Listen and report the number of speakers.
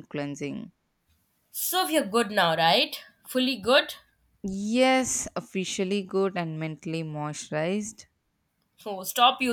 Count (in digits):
2